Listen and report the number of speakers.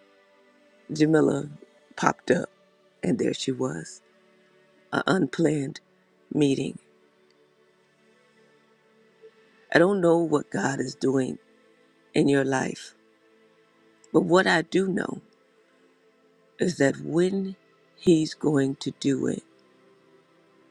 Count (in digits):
1